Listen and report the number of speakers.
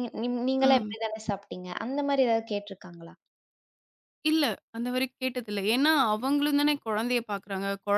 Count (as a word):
two